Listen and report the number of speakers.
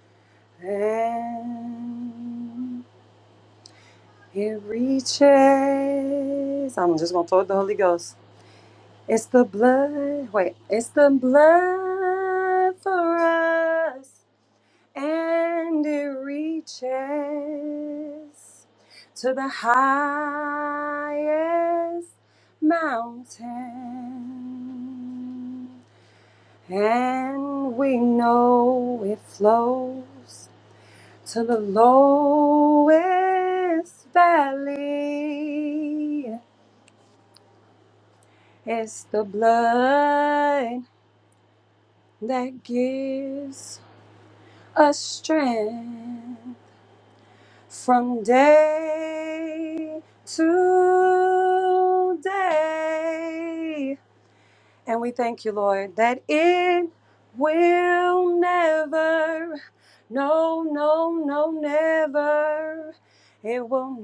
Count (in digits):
1